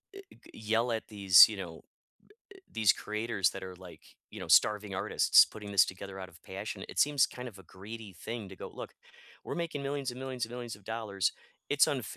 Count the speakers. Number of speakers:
1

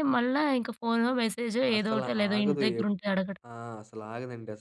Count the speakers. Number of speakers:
2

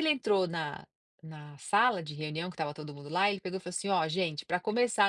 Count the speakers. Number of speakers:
1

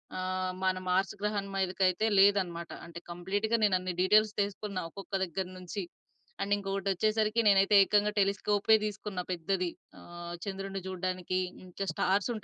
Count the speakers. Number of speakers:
1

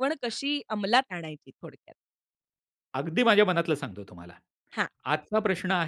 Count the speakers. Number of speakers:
2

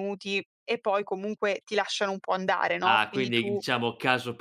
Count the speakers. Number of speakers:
2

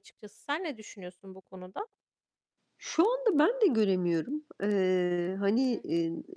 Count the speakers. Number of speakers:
2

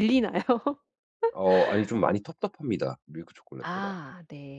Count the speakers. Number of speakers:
2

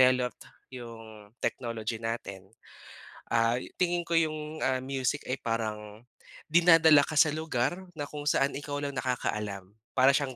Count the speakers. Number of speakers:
1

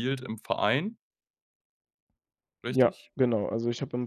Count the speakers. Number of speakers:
2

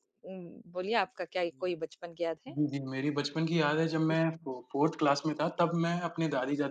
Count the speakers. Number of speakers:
2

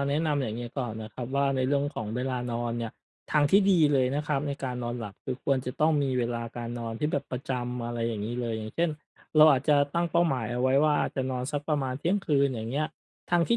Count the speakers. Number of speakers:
1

